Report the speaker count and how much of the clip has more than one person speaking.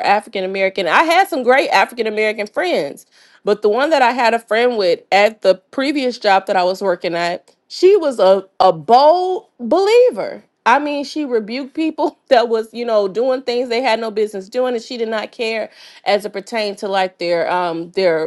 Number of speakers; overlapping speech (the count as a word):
one, no overlap